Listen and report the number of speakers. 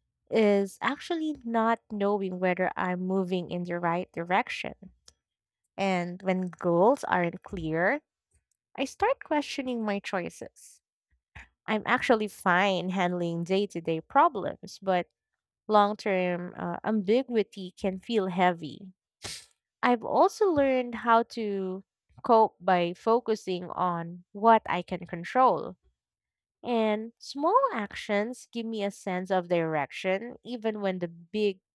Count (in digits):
1